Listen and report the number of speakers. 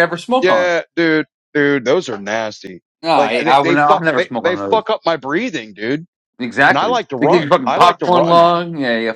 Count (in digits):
2